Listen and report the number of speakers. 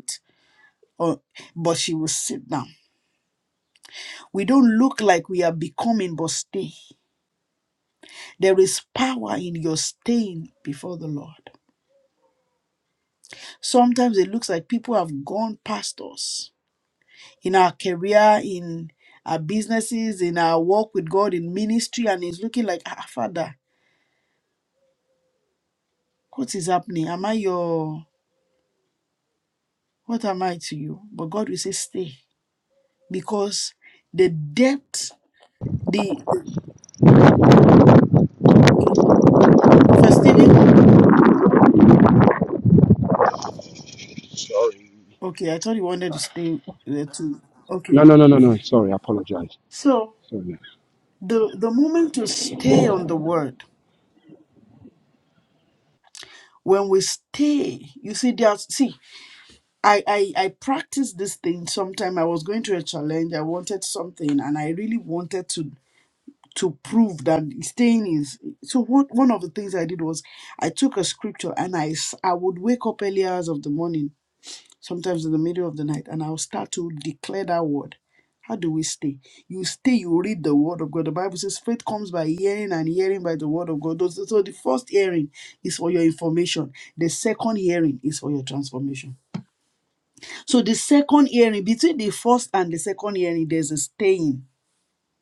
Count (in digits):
2